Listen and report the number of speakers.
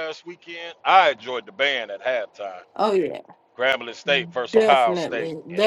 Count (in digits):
2